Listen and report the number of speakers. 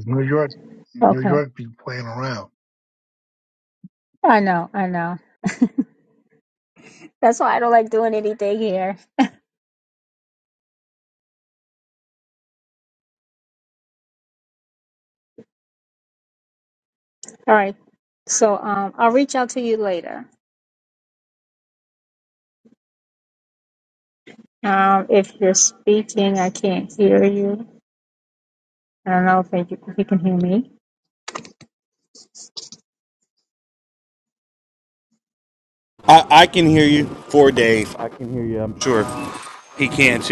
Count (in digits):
3